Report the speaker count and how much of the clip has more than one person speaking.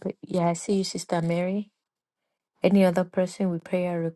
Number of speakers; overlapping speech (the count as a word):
one, no overlap